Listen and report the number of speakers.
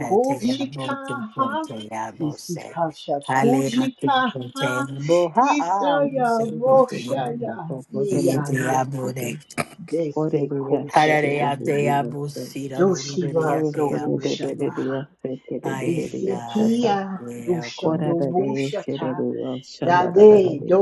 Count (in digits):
3